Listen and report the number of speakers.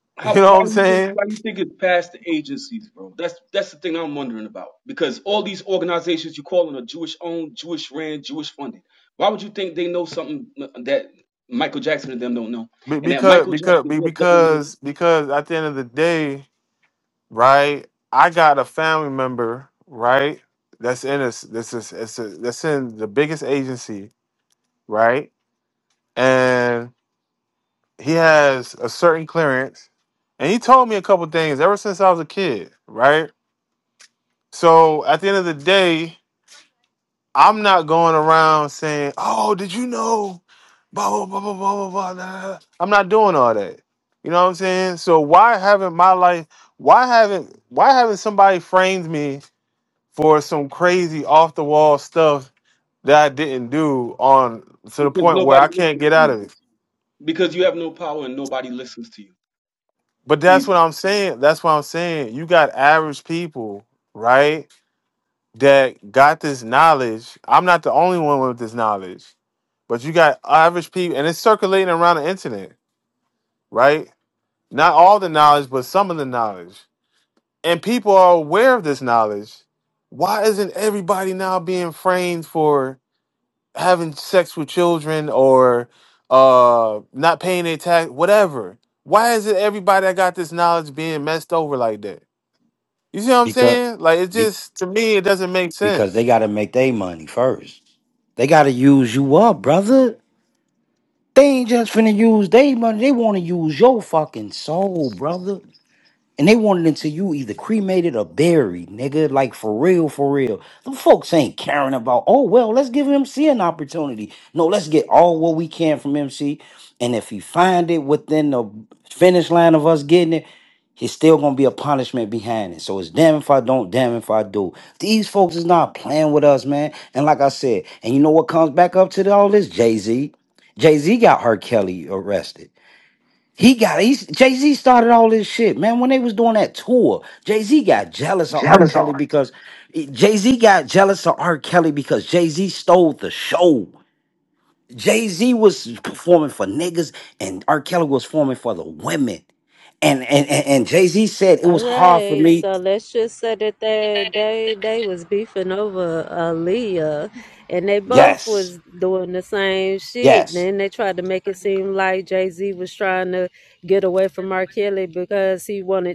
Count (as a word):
four